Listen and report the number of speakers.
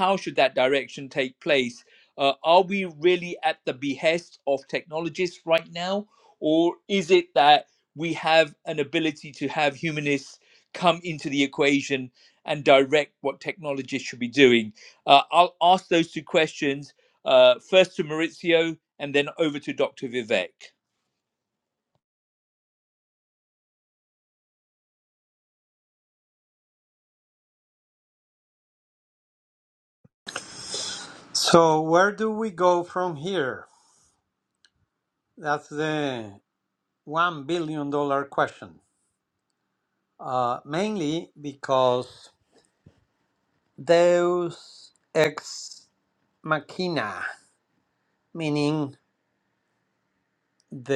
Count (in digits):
2